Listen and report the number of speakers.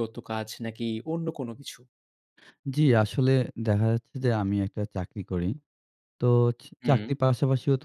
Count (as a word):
two